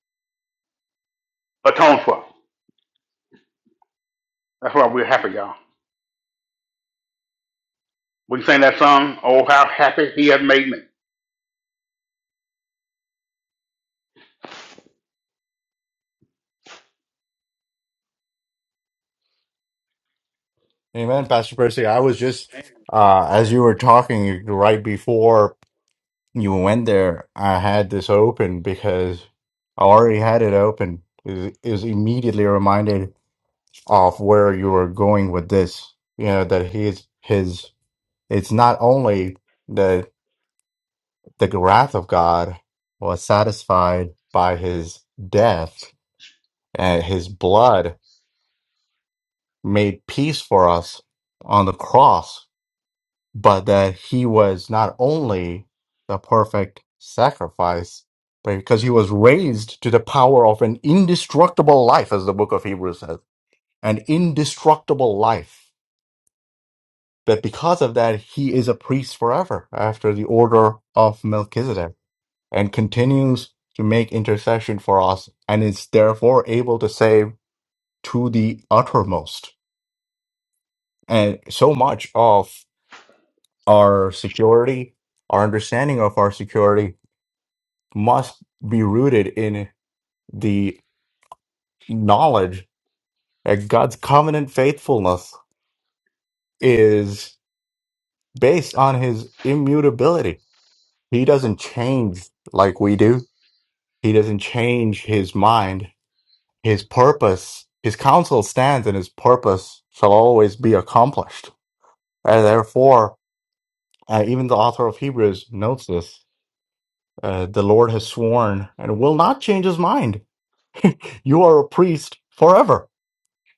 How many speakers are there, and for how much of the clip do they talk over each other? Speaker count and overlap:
2, no overlap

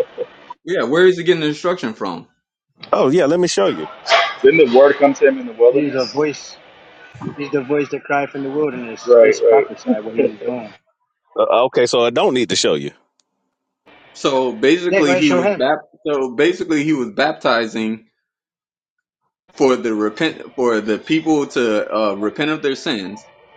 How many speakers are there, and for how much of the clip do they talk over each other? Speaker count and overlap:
4, about 7%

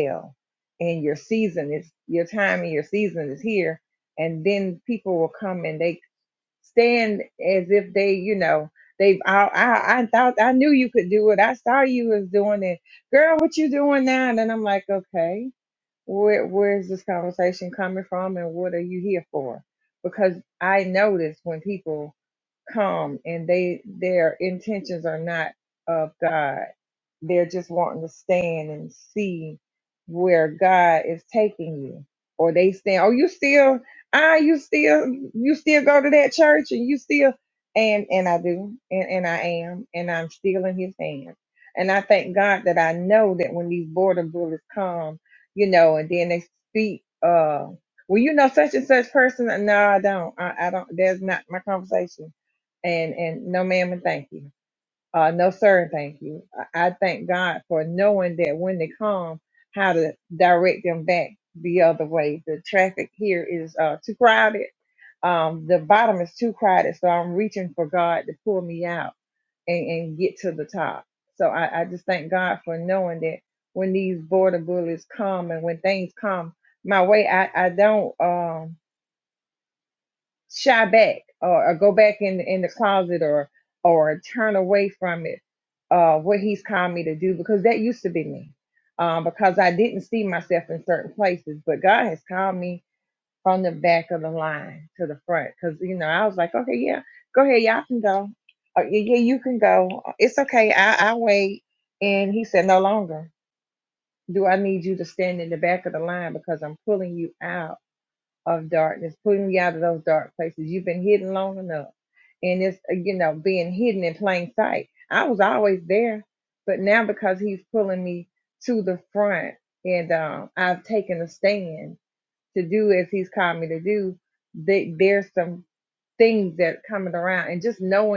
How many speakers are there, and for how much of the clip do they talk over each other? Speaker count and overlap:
1, no overlap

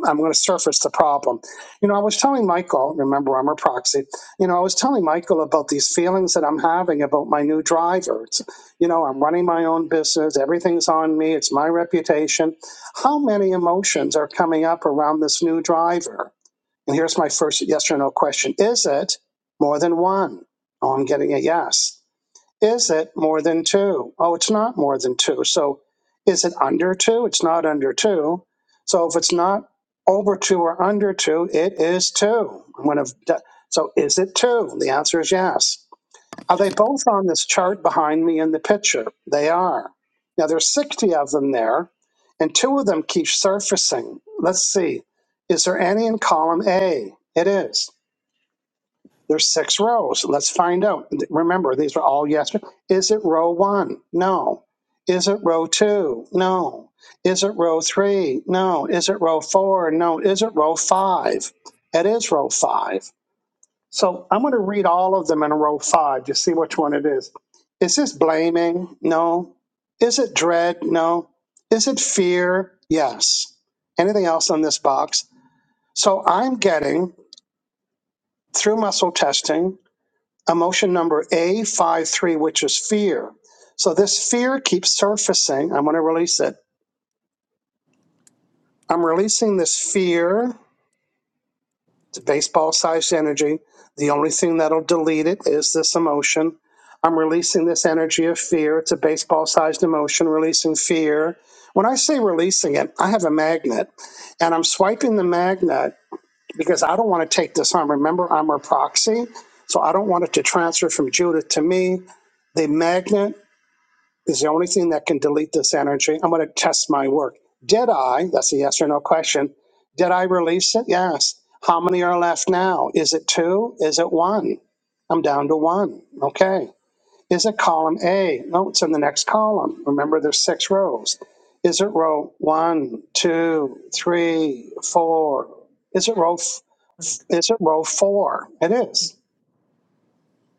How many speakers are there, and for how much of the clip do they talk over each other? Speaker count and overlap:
1, no overlap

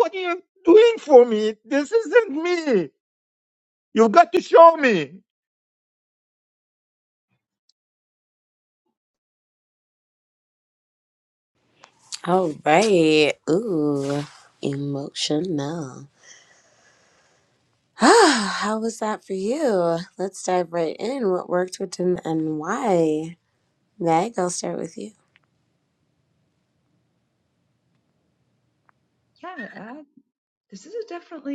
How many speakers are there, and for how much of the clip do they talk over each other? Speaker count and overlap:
3, no overlap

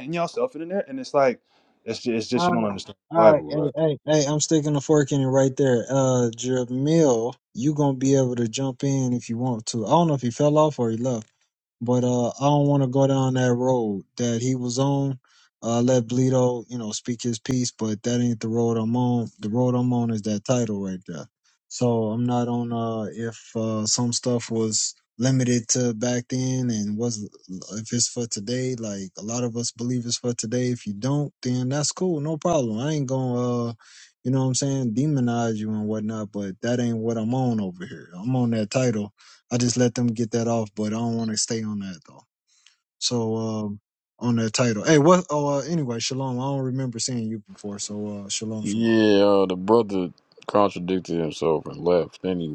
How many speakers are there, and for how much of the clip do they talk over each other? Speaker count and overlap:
3, about 2%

